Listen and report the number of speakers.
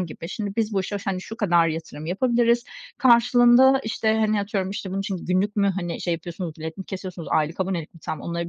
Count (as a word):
one